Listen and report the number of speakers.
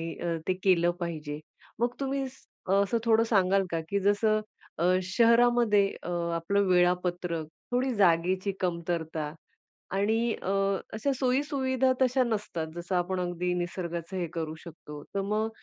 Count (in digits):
1